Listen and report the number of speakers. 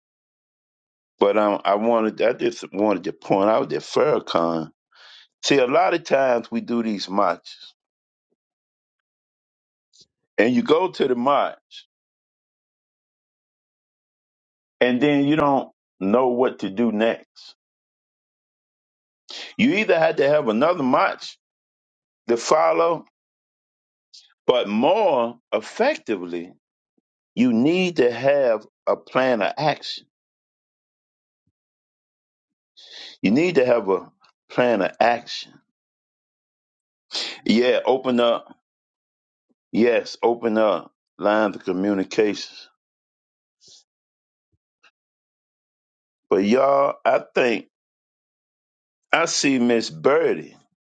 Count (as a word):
one